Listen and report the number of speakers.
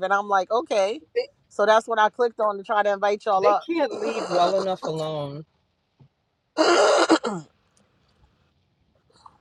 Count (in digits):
2